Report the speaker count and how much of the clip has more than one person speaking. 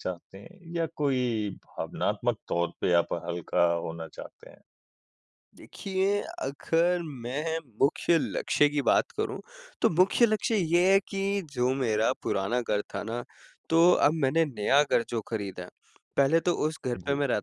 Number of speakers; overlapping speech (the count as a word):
two, about 1%